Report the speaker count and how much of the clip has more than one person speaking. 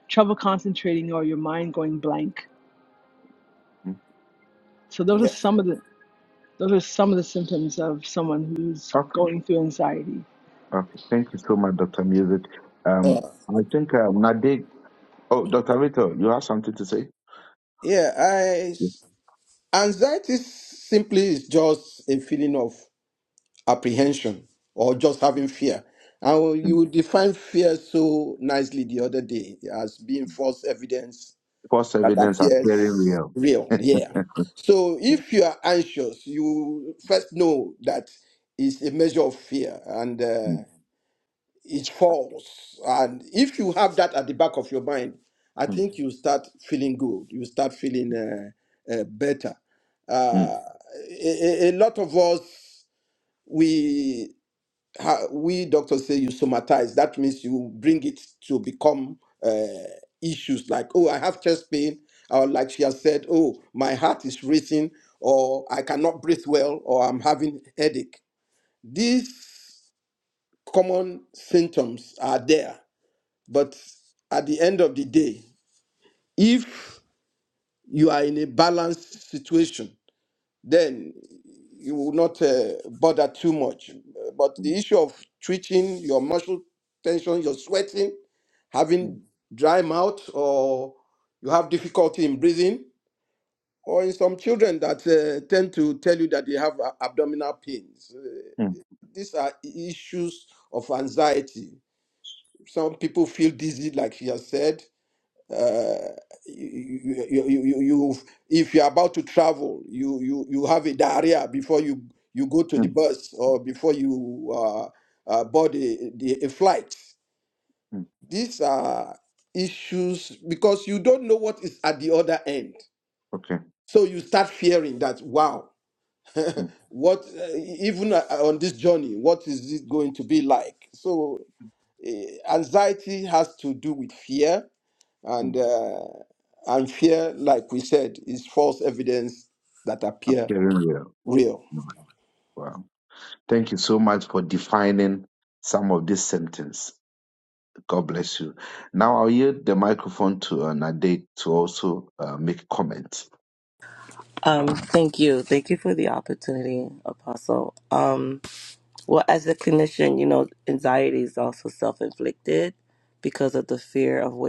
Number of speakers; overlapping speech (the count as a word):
four, about 2%